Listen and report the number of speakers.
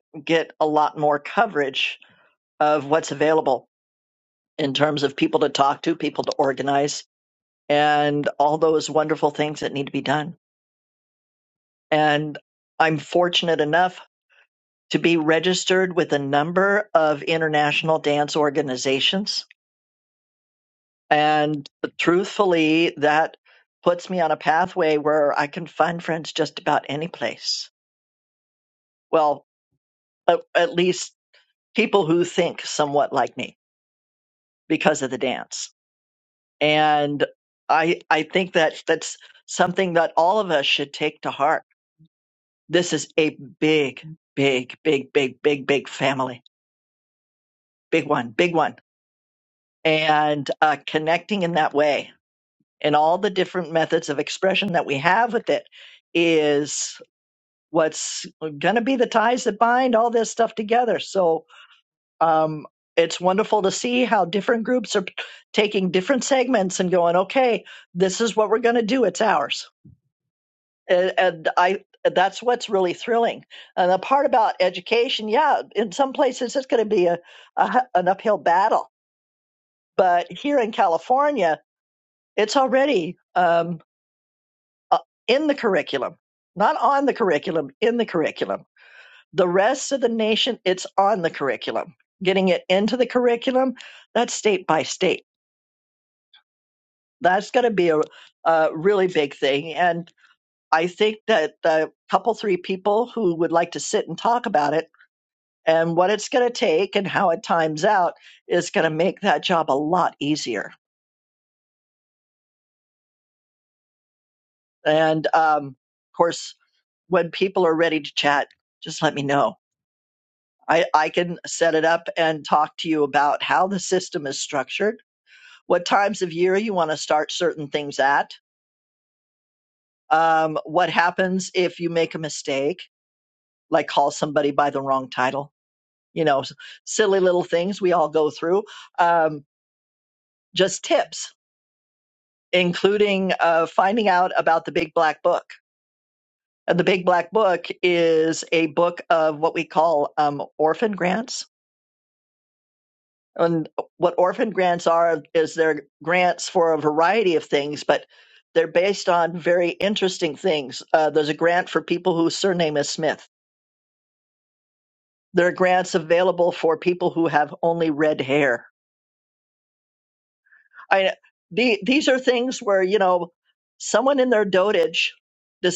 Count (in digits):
1